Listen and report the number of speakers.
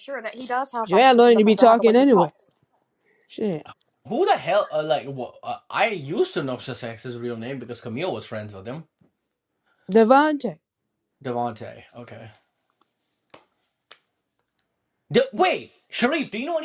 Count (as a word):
three